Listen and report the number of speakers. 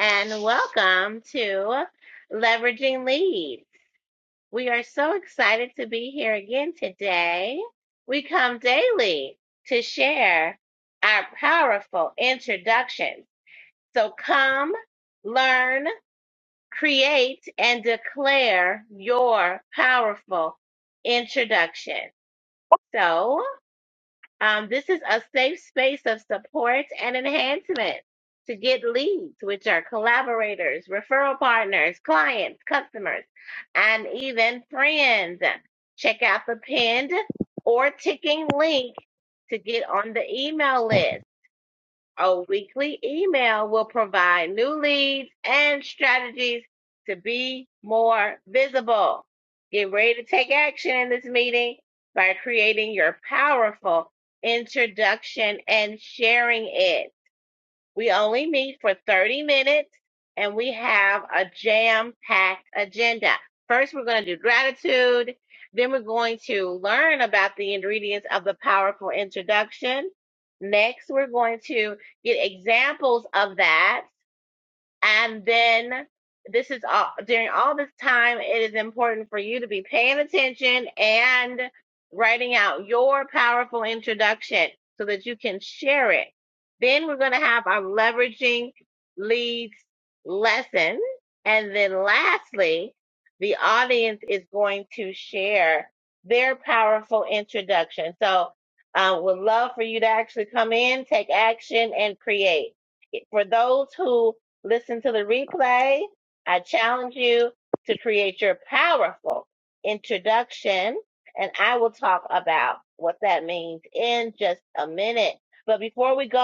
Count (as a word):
one